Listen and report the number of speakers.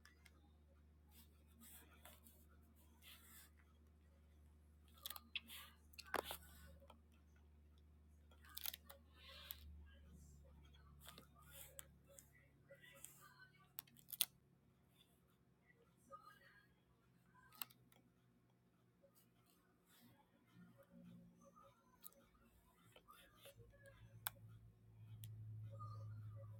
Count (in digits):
0